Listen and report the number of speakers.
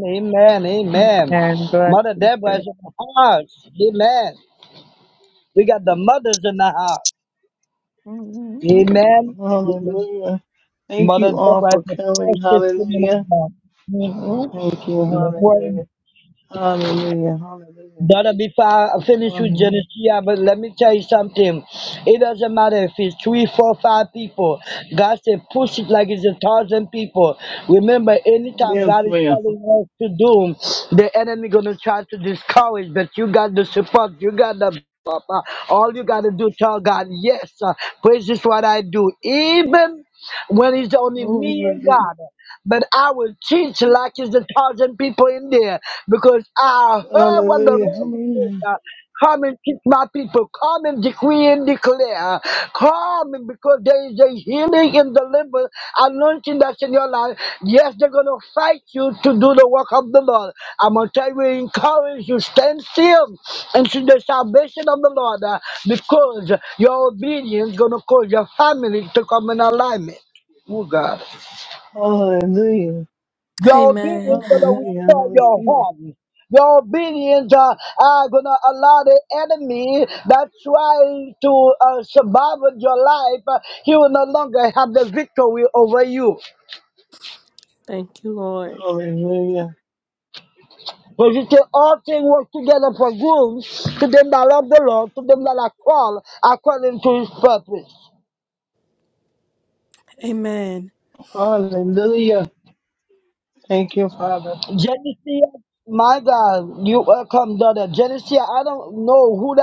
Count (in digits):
4